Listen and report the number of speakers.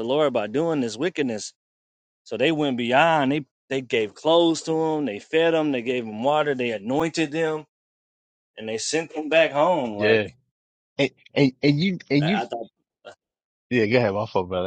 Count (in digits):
2